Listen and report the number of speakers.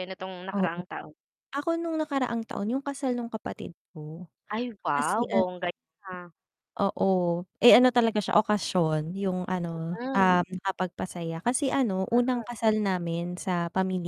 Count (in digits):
2